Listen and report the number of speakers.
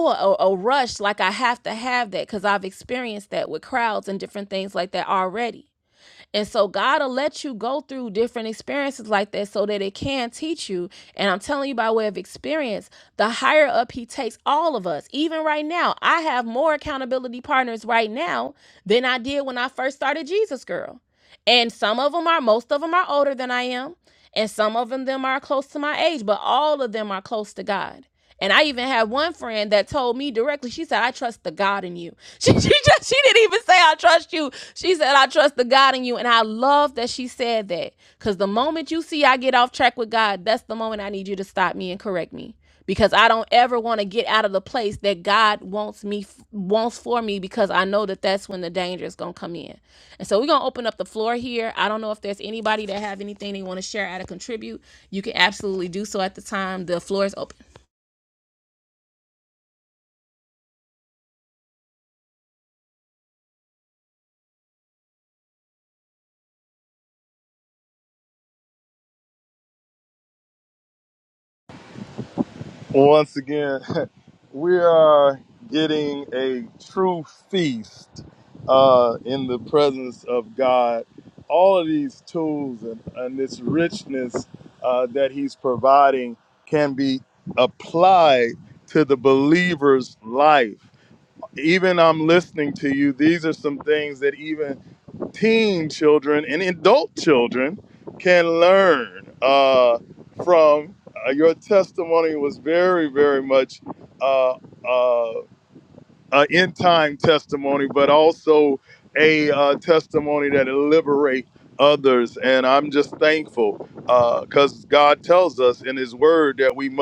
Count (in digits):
2